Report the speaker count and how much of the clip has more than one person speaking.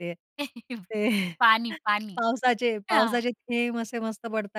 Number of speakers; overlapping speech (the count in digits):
2, about 7%